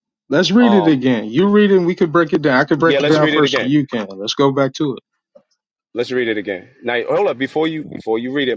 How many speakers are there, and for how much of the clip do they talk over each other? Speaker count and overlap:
two, about 15%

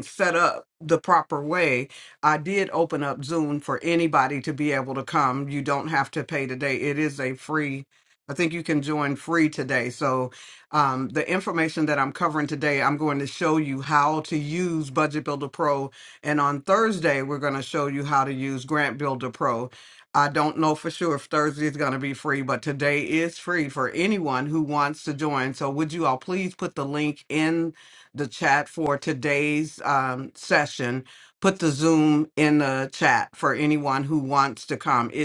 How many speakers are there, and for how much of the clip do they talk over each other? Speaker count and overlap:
one, no overlap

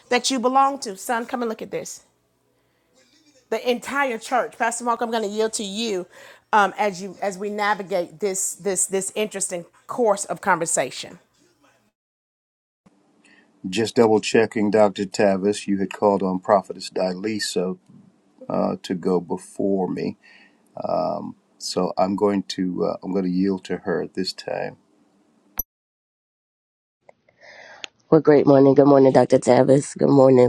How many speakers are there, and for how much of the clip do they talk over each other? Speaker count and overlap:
three, no overlap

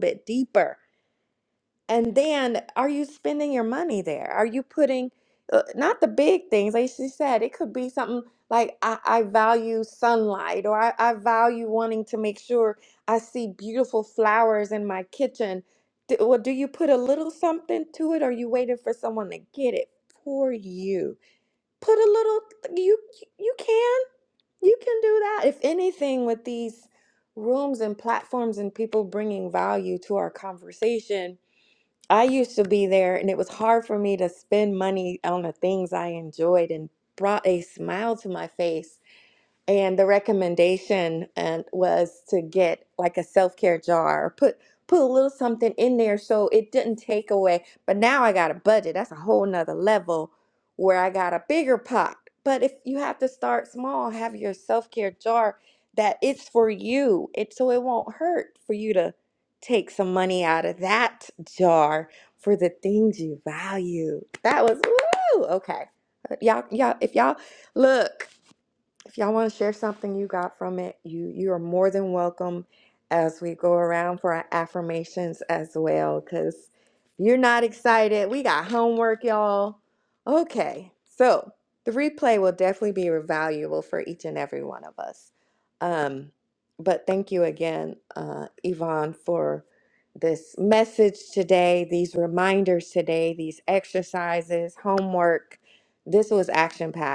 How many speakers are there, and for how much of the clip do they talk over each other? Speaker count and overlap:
one, no overlap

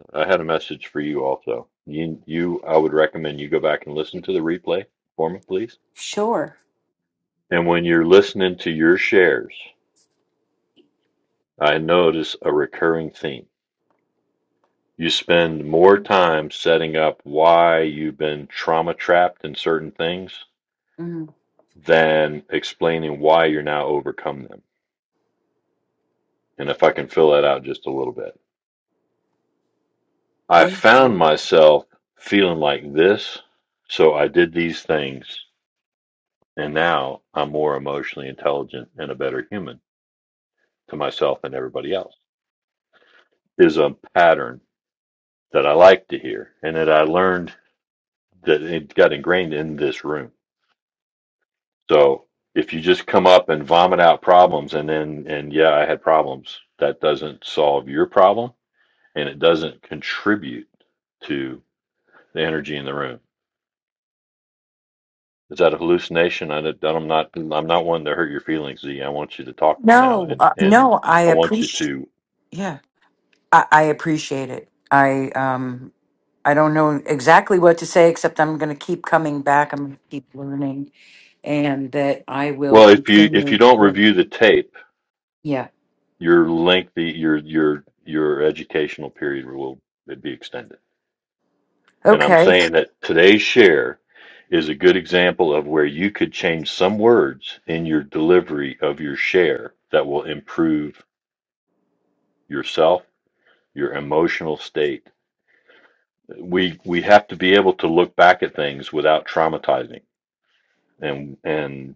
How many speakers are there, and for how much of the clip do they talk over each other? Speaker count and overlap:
two, about 4%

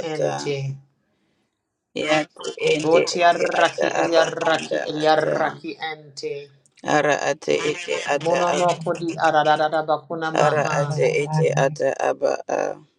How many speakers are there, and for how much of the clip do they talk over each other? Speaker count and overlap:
two, about 31%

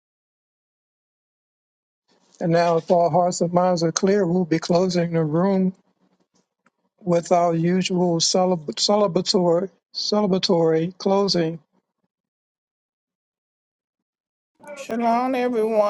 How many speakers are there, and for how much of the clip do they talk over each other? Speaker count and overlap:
two, no overlap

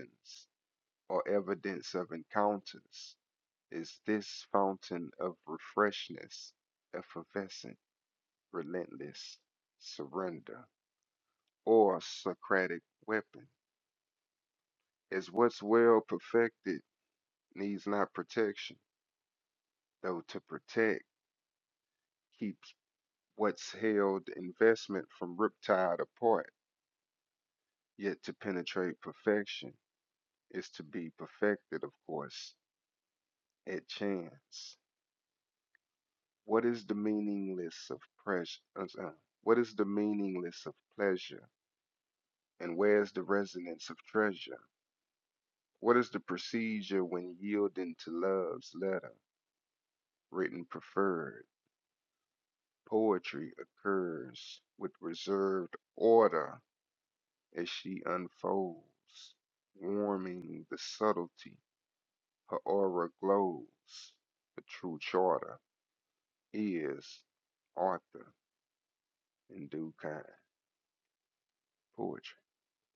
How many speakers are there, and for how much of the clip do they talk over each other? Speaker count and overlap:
one, no overlap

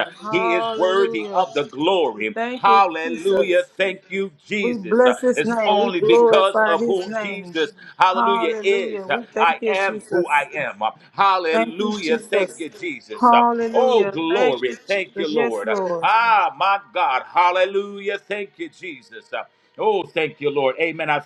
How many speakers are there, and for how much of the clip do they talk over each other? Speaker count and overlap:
two, about 53%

